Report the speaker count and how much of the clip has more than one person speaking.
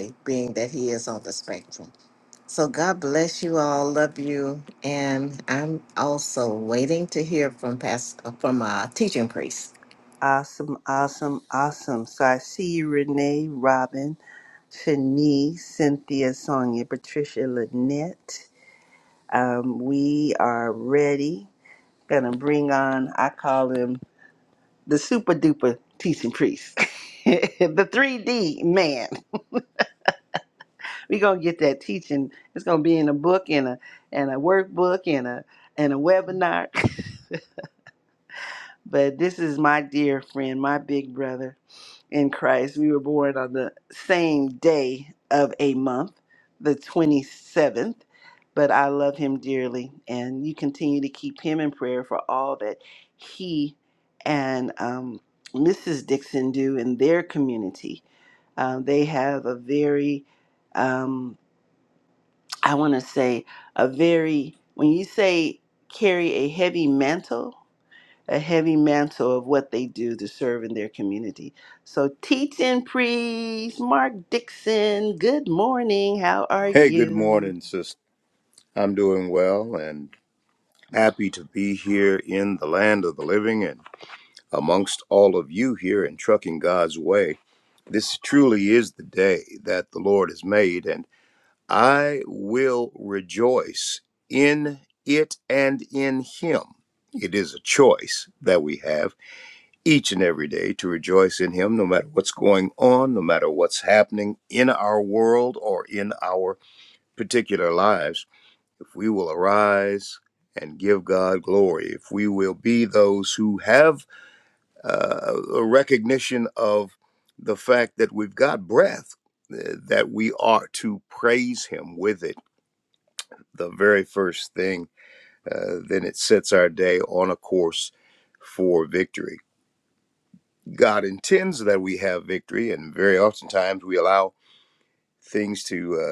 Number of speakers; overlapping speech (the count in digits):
3, about 1%